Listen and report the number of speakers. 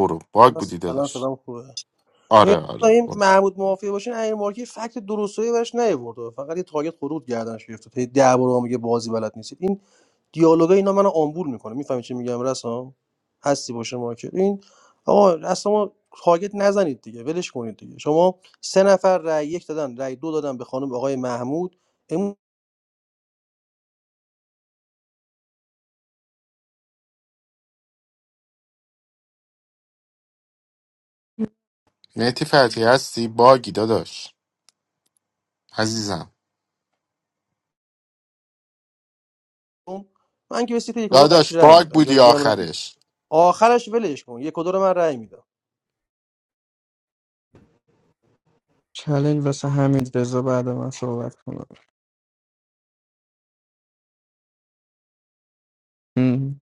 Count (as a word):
three